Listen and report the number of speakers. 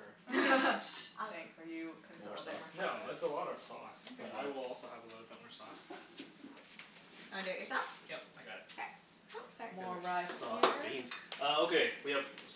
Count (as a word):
four